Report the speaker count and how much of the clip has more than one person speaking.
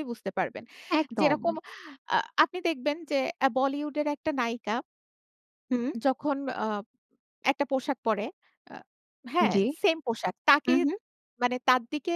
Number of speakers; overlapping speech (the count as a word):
two, about 5%